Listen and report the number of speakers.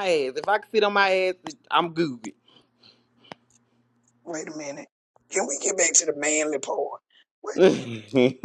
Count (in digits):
2